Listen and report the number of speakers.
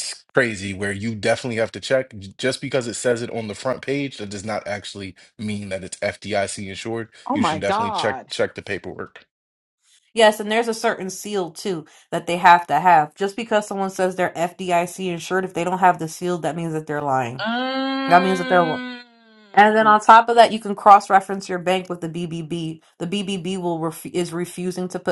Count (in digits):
3